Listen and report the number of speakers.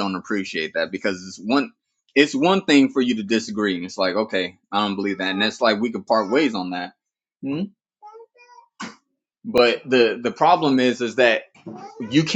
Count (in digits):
1